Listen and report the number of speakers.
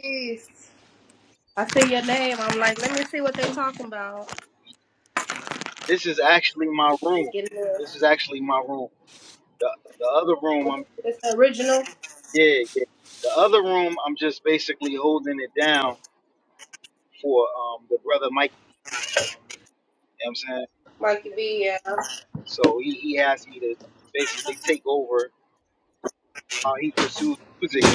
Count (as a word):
two